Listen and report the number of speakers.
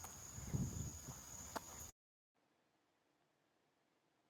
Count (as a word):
zero